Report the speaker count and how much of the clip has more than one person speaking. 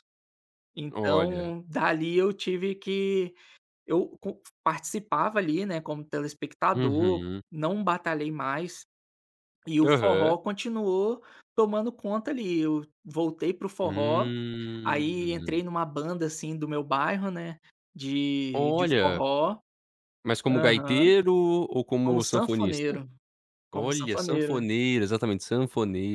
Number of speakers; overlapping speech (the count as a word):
two, about 20%